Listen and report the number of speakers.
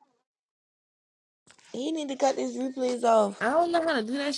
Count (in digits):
2